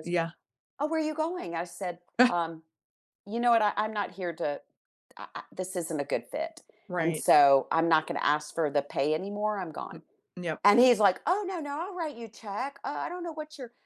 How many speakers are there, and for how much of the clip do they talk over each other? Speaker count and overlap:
two, about 3%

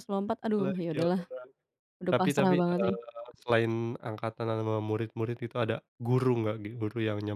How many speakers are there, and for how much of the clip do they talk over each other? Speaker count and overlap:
two, about 20%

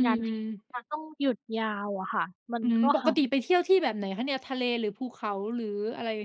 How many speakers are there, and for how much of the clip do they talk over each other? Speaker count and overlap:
two, about 10%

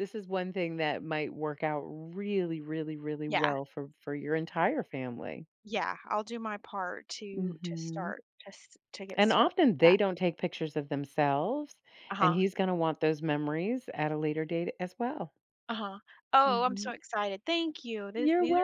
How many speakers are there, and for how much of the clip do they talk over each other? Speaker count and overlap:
two, about 14%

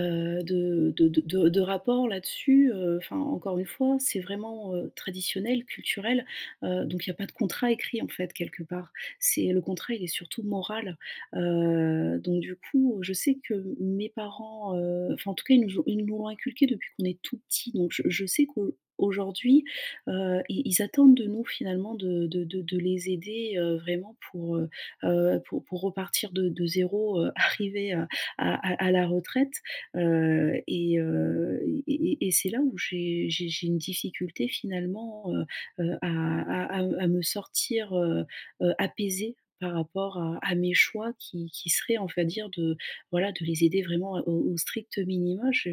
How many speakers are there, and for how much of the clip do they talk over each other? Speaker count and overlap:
one, no overlap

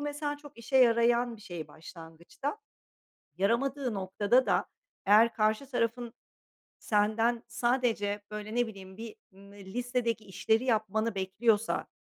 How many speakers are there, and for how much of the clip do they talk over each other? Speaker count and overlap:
one, no overlap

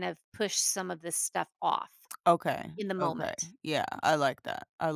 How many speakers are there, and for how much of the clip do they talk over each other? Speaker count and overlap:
two, about 11%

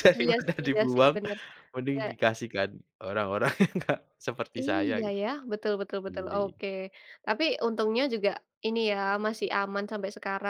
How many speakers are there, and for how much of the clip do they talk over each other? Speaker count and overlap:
two, about 22%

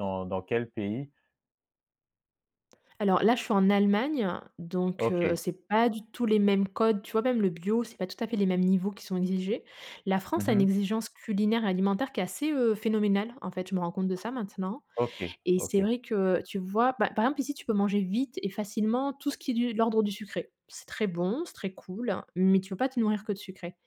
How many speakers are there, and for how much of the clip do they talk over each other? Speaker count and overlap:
two, about 4%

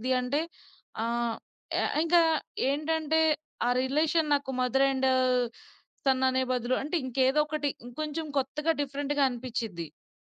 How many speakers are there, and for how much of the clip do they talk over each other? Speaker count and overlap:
one, no overlap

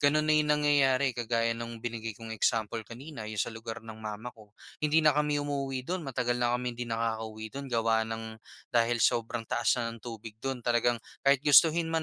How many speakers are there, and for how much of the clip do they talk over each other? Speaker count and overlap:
one, no overlap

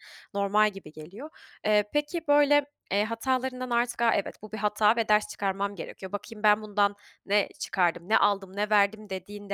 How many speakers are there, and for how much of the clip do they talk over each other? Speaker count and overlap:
one, no overlap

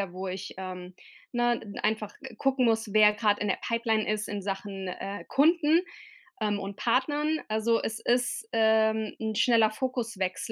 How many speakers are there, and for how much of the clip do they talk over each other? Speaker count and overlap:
one, no overlap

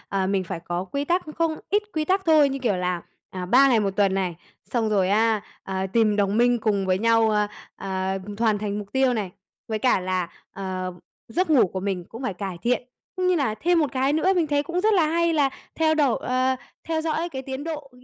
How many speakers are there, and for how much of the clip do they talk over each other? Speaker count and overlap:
one, no overlap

